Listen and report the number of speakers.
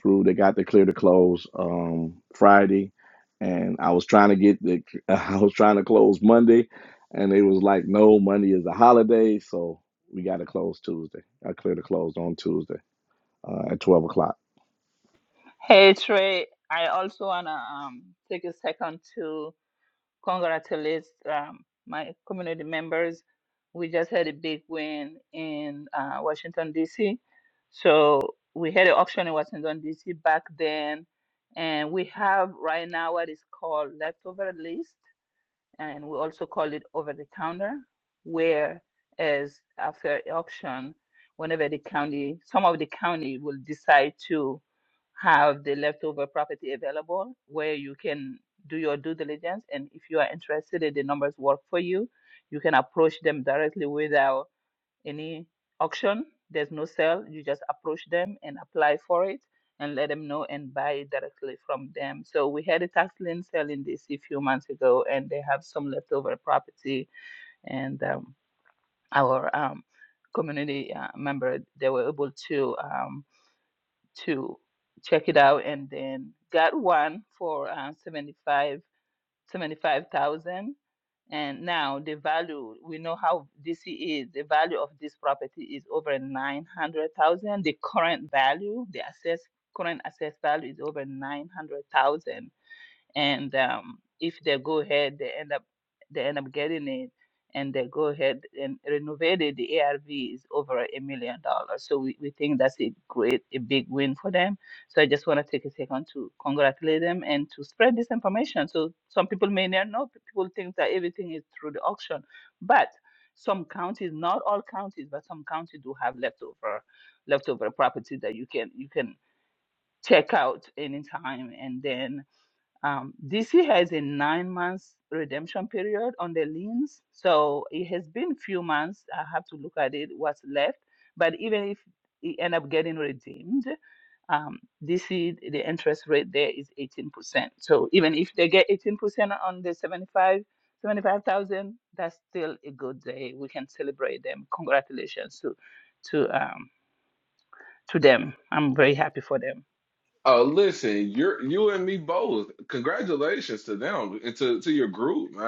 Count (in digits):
3